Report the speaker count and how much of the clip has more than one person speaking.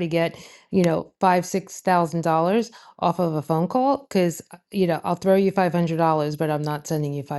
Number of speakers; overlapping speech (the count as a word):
one, no overlap